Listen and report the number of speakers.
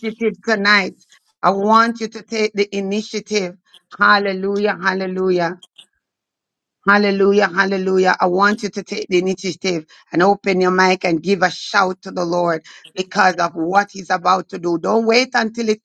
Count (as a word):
one